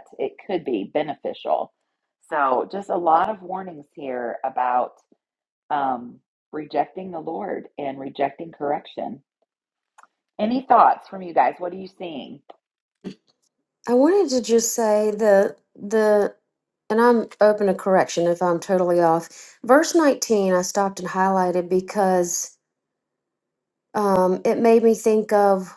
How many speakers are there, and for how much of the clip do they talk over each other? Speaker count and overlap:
two, no overlap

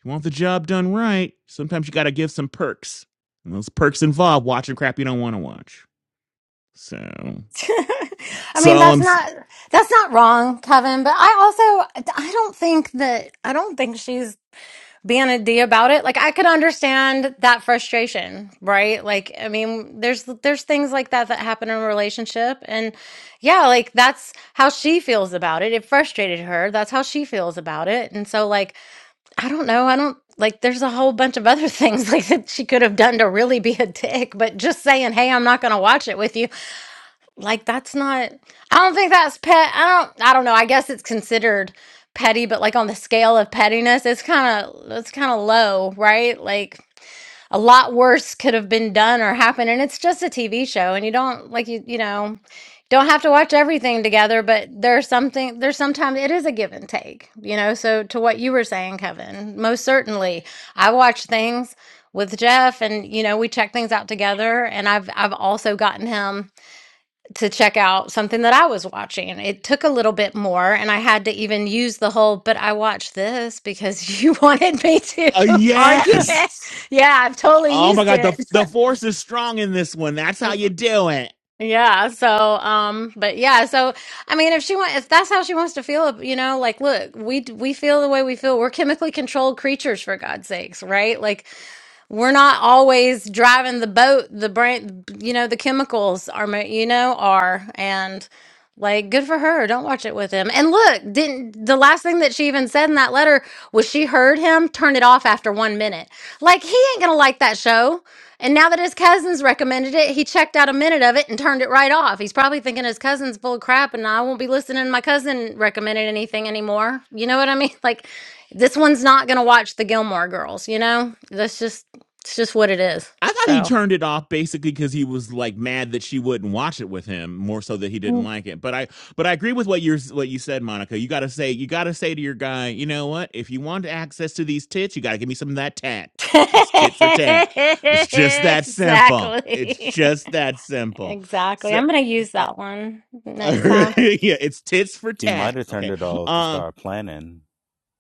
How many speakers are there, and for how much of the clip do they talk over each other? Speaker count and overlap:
three, about 4%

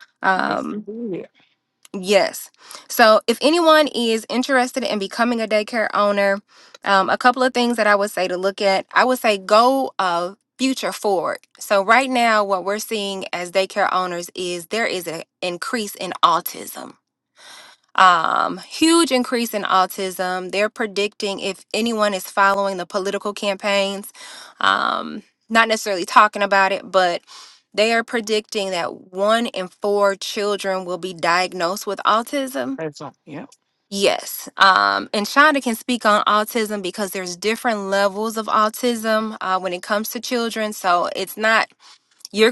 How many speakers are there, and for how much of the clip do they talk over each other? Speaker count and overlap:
two, about 1%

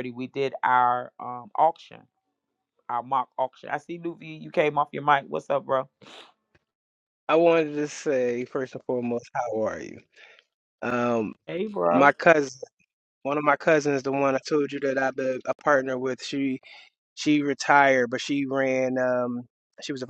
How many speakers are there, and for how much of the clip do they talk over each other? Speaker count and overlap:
two, about 1%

